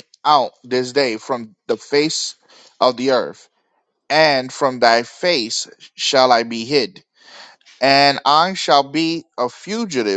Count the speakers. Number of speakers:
one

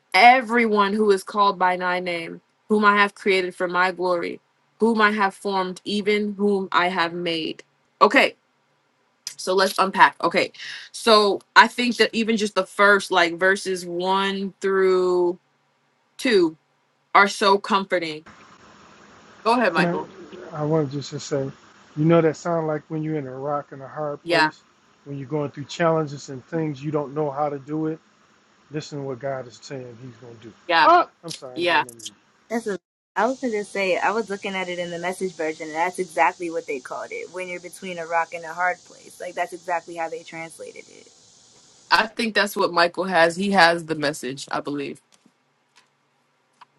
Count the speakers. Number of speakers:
three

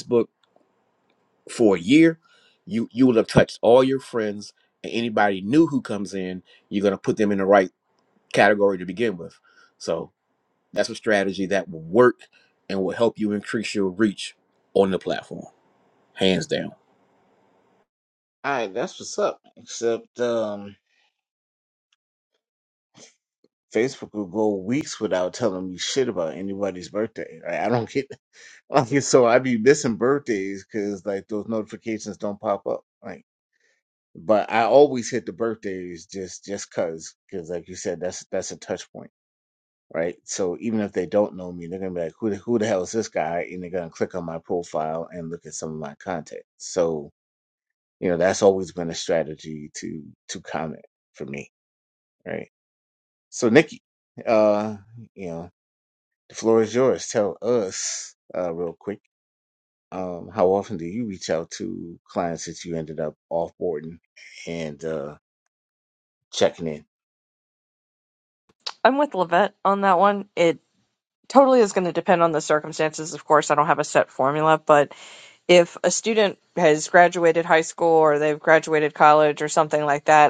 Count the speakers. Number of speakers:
three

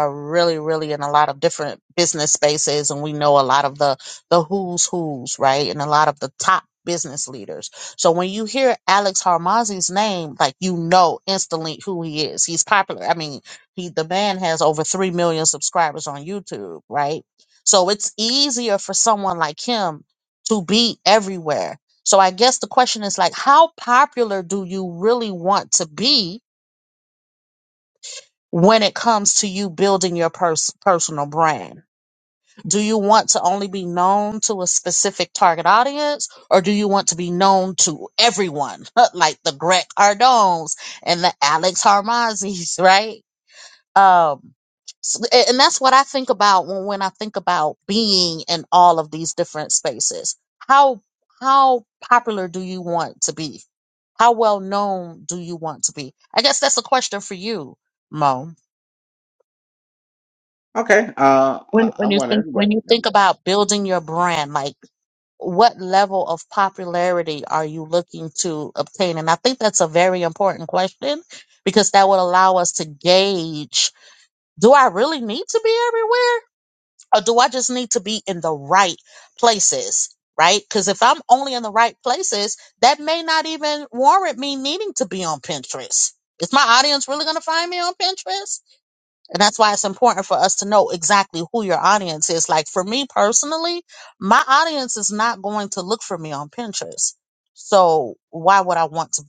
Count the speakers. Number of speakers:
two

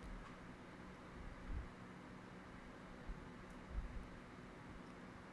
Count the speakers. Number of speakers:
zero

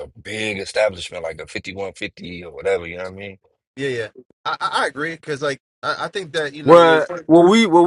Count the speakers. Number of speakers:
three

